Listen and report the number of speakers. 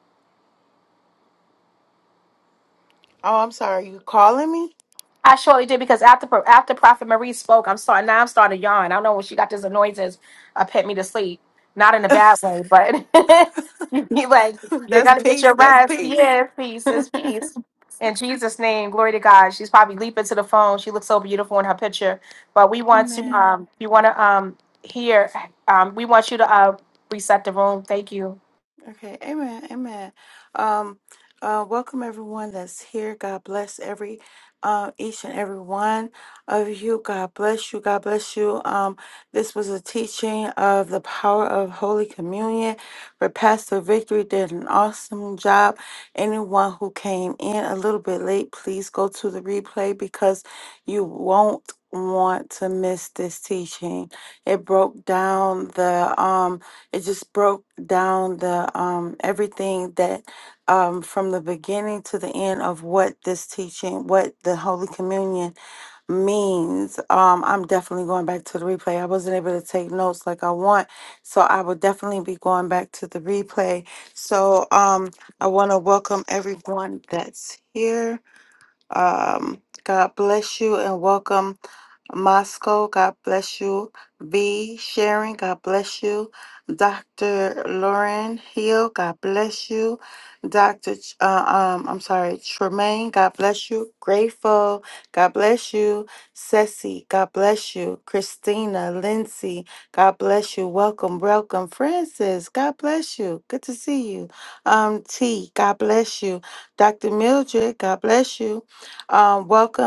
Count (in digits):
2